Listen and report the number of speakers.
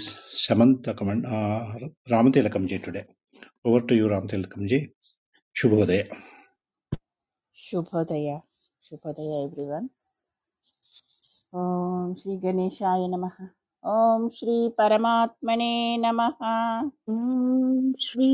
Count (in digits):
3